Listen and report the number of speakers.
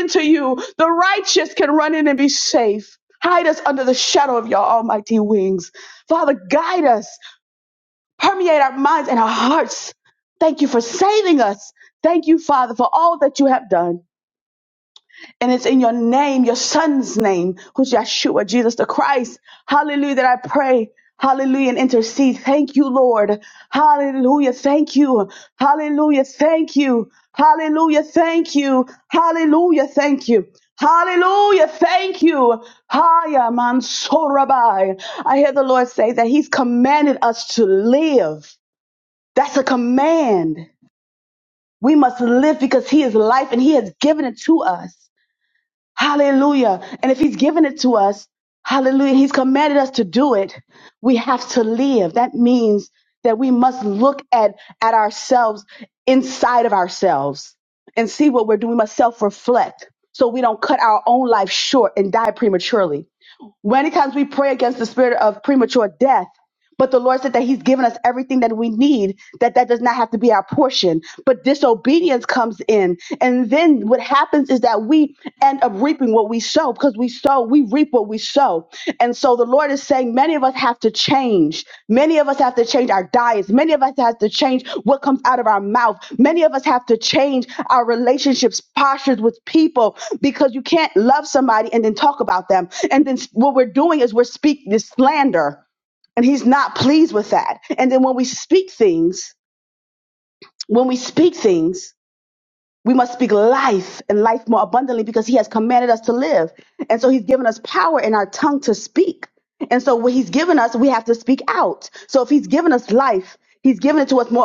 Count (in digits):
1